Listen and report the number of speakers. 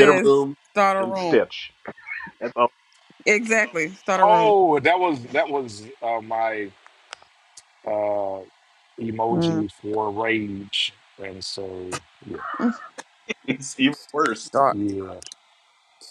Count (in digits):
3